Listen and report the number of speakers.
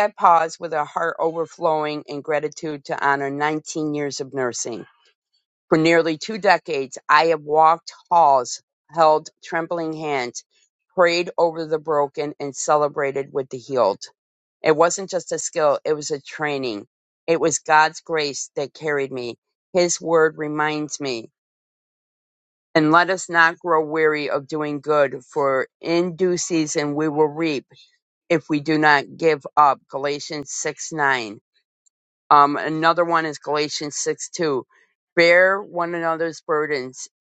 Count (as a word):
one